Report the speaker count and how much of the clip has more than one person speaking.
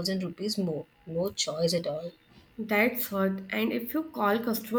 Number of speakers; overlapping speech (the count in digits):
2, no overlap